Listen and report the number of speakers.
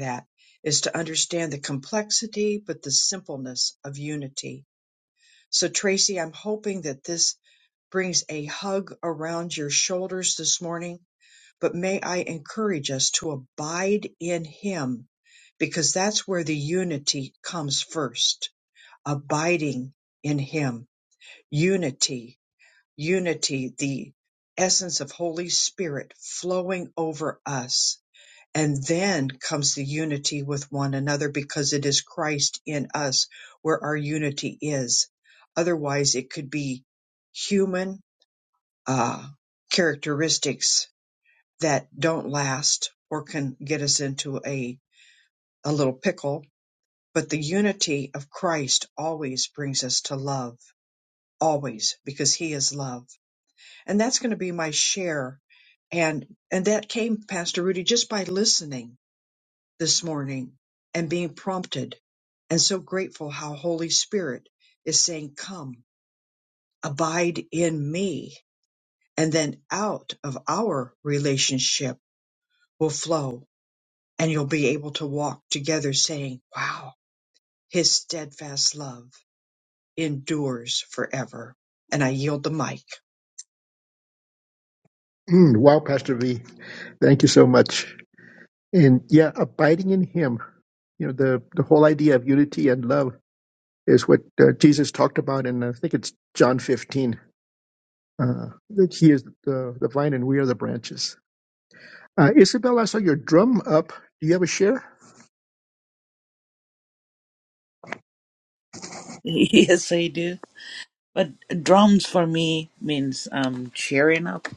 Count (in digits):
3